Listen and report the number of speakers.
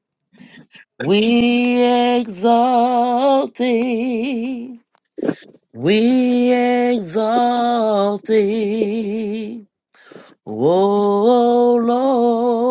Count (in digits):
1